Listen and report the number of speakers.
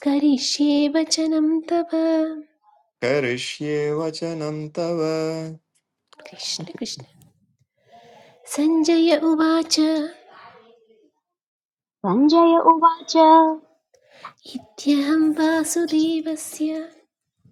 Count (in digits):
3